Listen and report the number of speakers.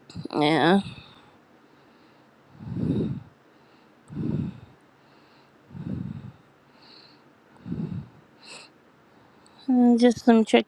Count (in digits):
1